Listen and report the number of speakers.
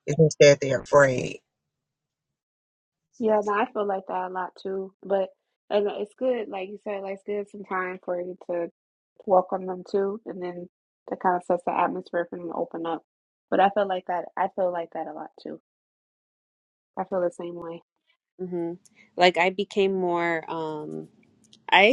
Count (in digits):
3